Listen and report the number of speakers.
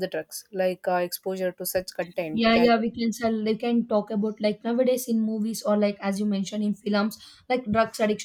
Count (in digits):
2